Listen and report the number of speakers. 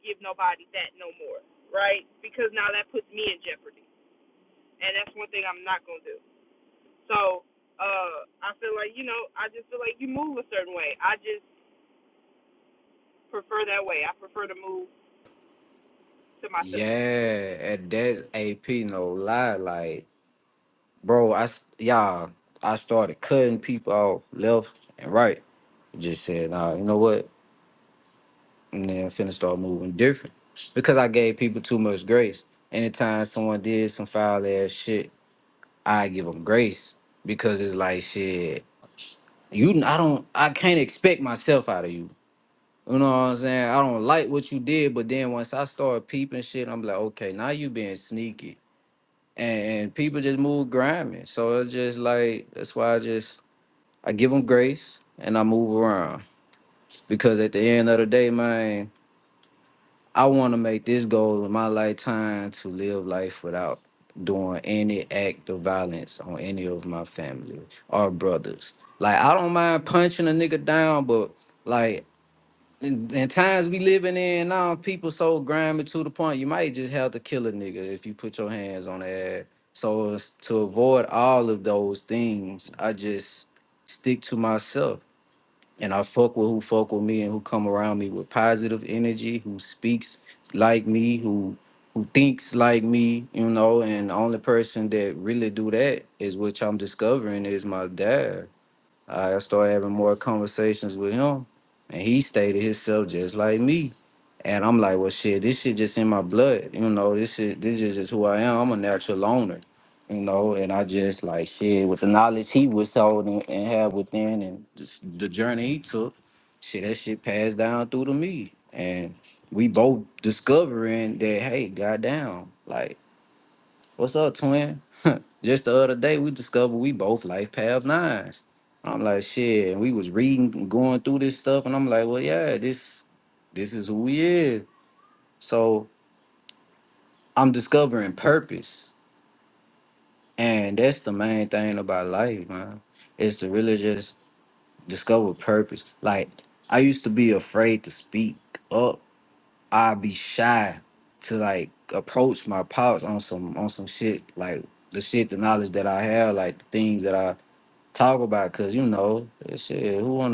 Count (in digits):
2